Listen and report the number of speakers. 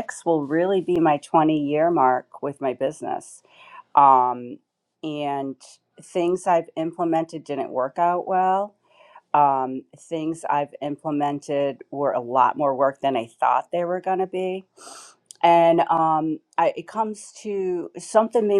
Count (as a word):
one